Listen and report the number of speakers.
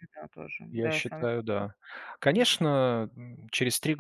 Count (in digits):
2